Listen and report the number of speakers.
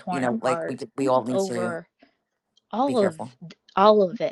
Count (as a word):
two